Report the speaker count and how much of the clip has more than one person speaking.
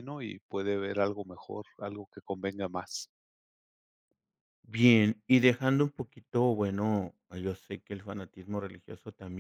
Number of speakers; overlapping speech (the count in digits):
2, no overlap